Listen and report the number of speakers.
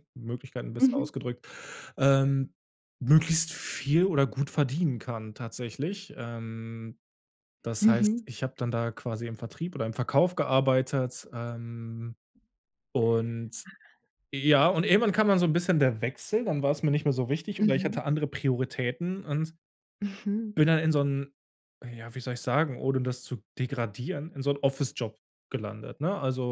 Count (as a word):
two